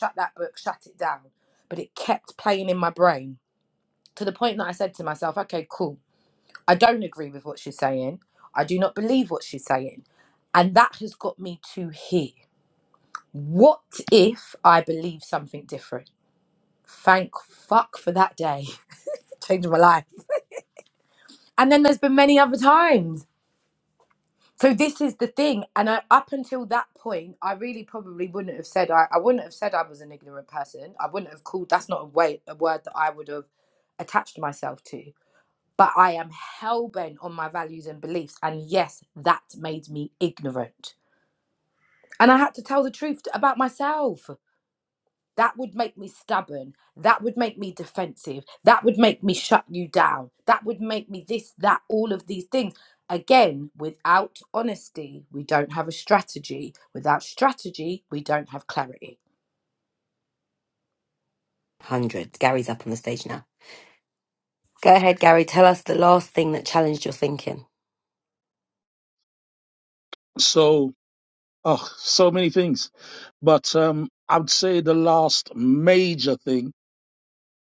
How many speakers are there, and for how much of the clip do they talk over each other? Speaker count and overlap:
3, no overlap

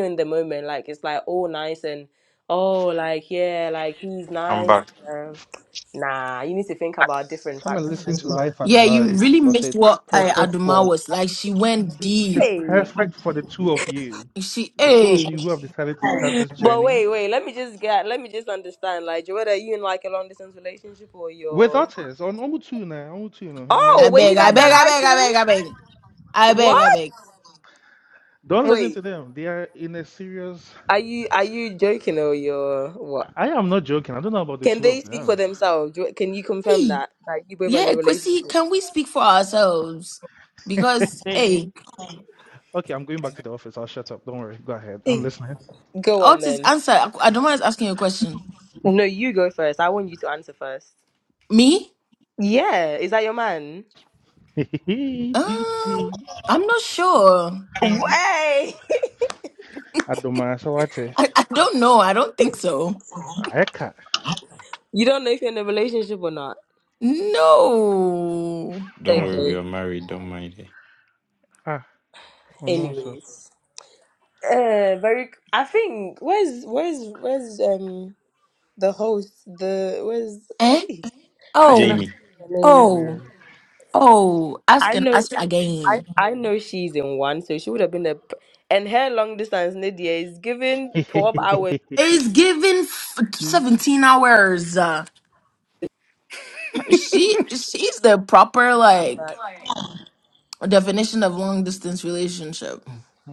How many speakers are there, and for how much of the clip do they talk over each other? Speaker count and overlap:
4, about 14%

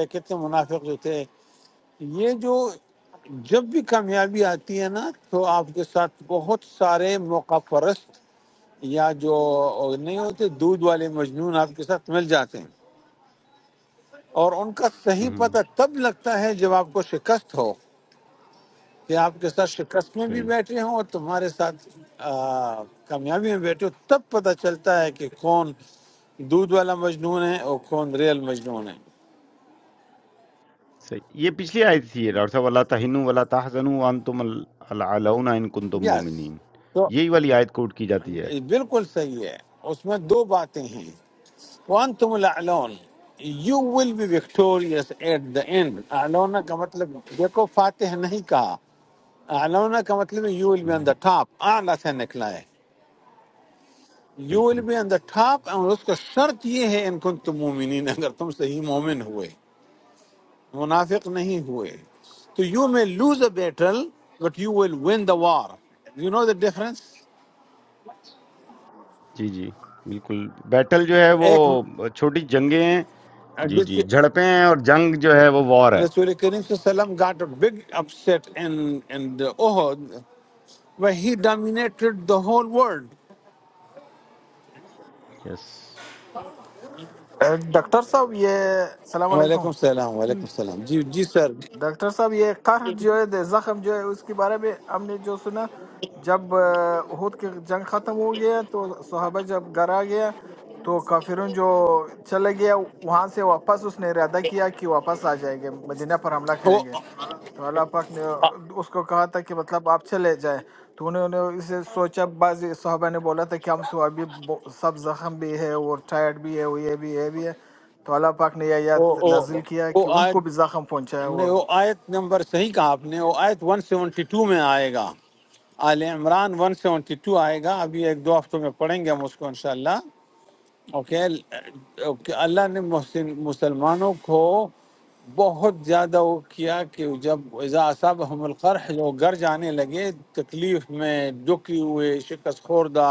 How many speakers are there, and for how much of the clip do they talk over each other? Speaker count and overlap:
3, about 2%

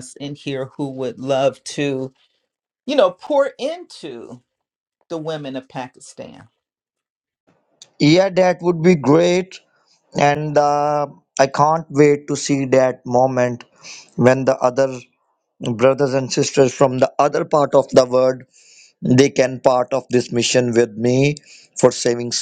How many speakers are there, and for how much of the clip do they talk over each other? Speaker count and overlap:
2, no overlap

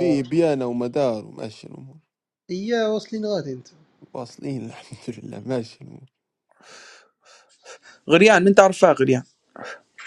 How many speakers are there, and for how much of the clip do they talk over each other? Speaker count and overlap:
3, about 2%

